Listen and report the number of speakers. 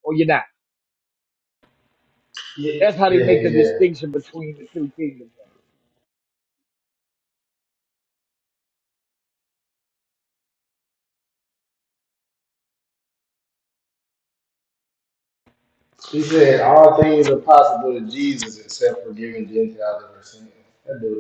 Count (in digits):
2